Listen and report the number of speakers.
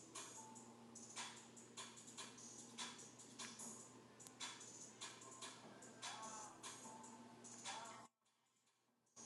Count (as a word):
zero